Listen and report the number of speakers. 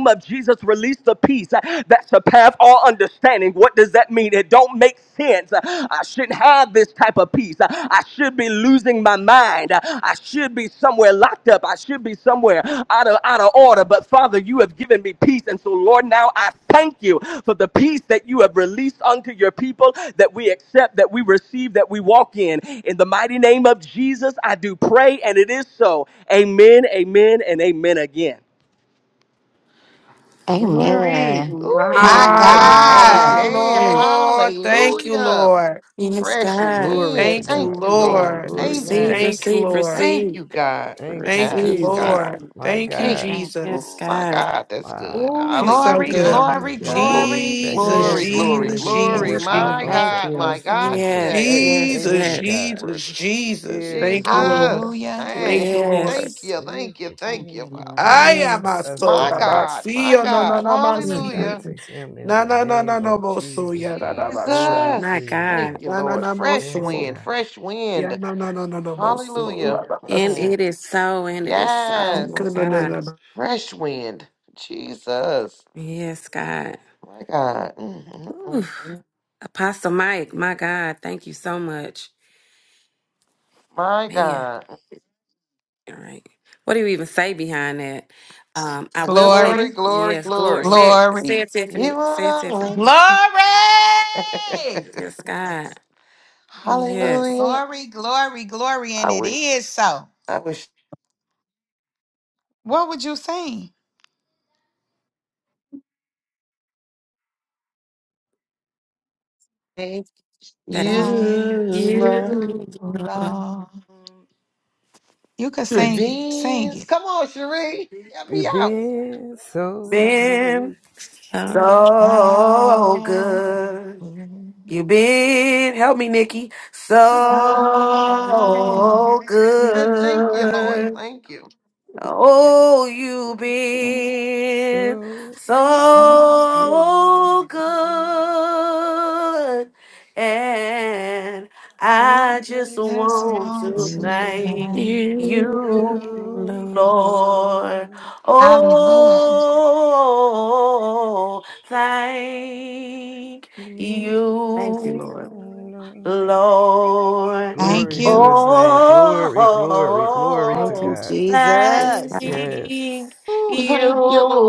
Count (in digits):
7